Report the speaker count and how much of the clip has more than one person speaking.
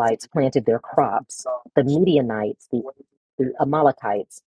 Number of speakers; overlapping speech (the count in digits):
1, no overlap